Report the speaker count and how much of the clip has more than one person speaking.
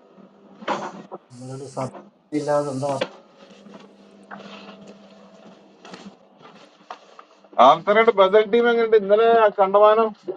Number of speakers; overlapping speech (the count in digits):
2, no overlap